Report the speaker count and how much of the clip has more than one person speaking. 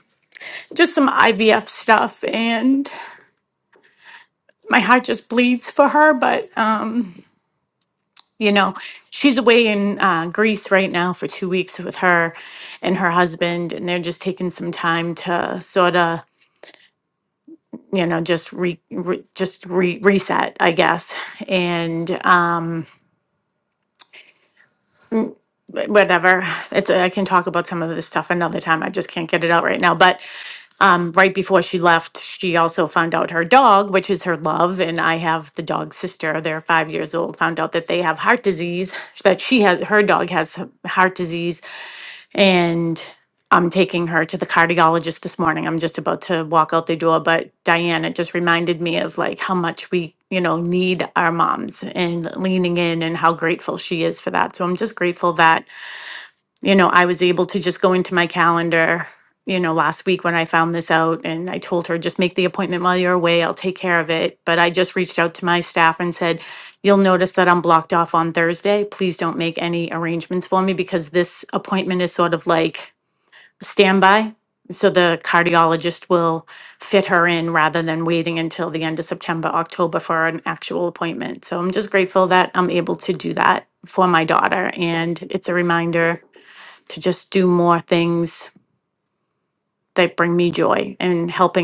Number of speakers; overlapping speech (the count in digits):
1, no overlap